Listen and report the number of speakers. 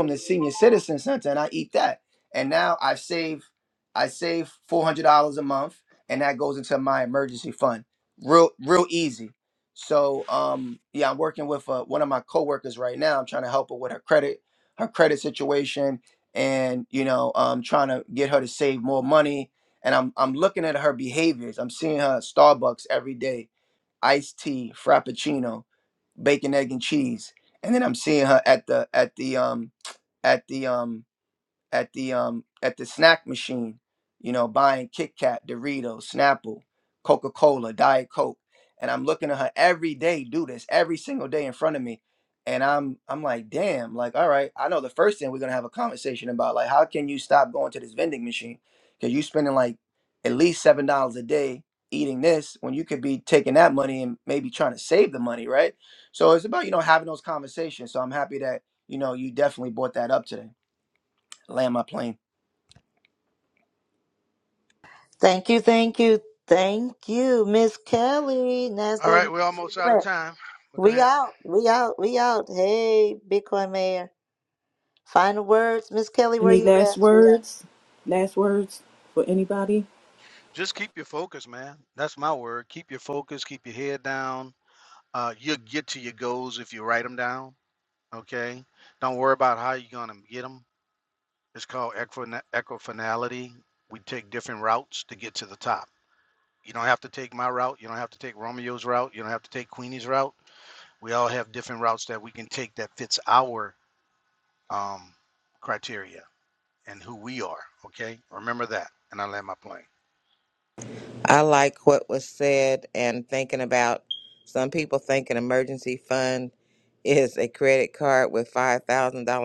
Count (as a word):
five